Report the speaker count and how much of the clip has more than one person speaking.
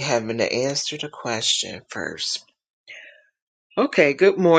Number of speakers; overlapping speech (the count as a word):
one, no overlap